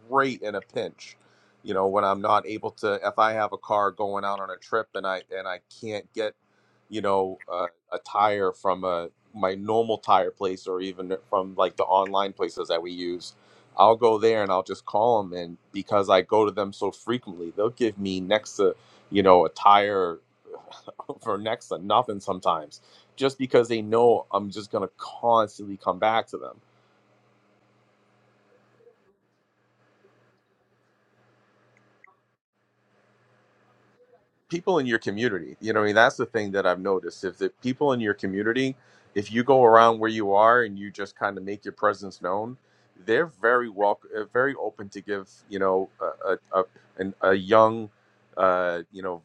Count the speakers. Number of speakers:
1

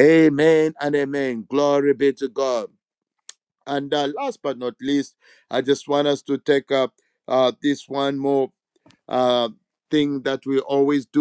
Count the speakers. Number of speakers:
1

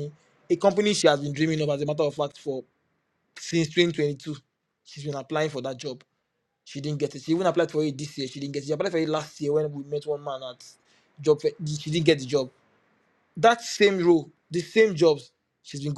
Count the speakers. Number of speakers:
1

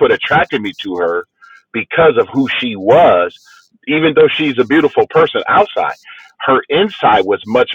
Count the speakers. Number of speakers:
1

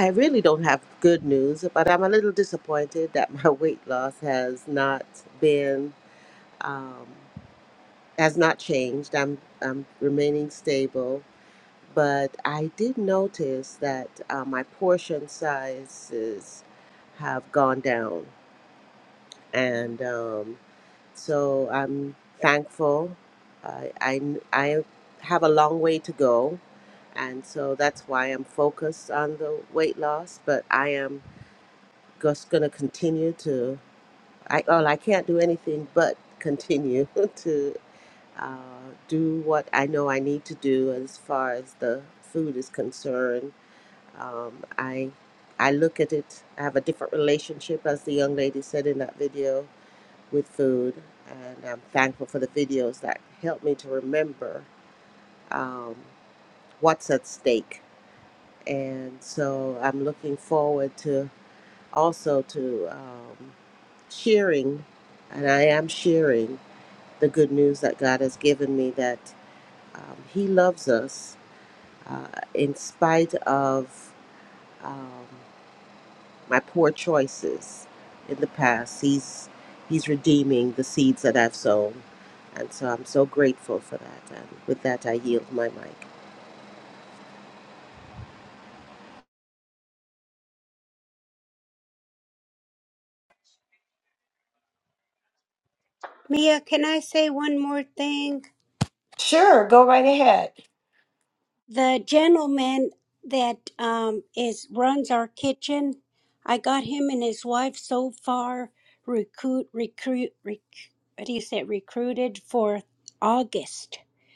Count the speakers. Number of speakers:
3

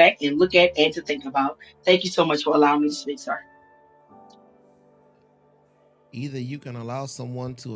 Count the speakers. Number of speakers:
2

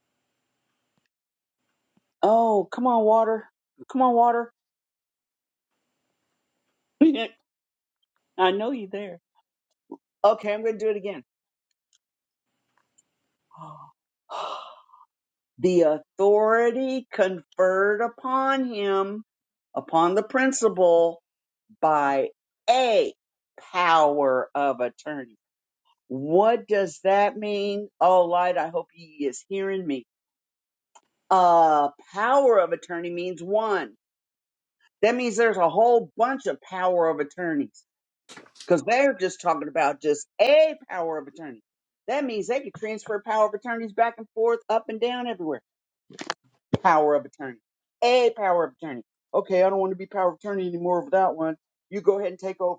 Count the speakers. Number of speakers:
1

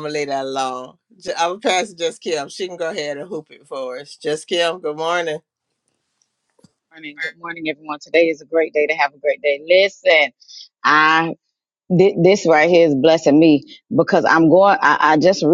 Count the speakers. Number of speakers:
2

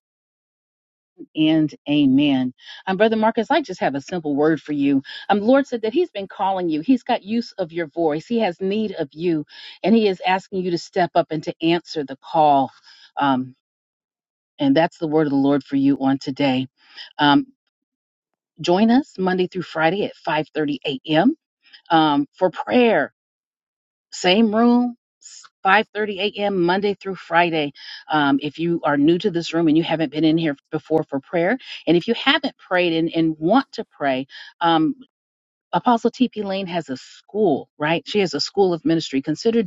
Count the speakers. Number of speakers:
1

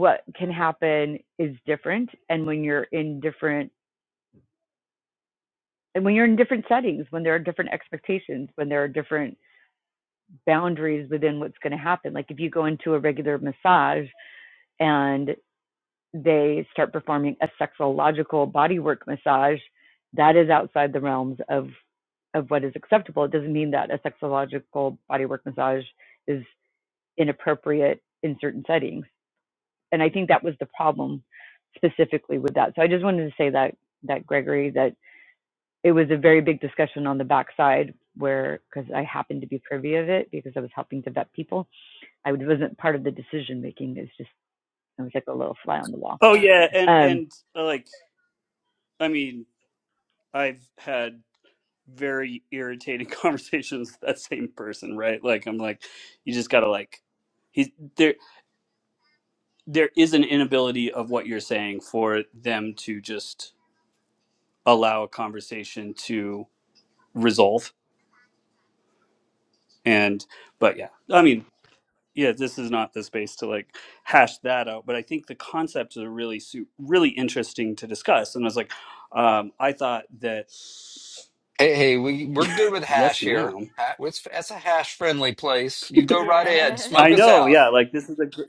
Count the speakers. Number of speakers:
3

